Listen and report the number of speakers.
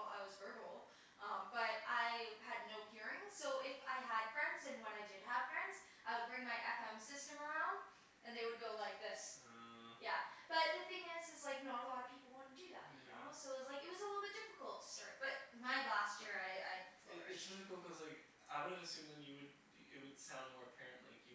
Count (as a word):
two